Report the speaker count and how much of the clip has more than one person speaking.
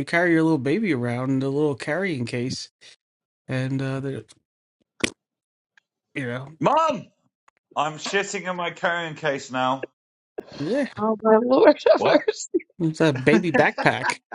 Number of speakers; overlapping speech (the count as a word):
three, about 2%